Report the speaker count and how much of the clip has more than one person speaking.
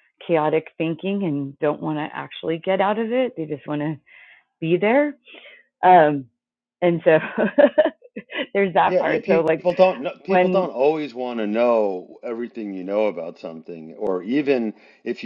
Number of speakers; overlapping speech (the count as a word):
two, about 7%